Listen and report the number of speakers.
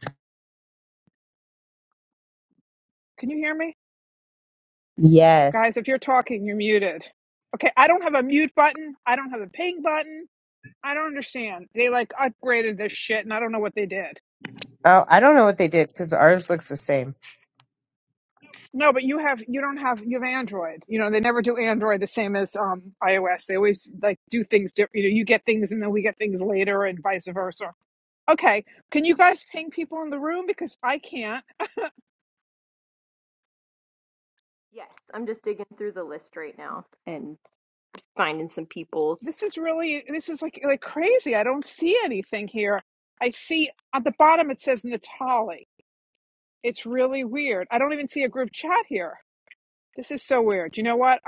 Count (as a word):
three